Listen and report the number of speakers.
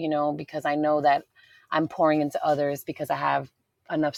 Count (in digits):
1